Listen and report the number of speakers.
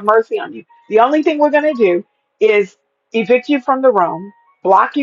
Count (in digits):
1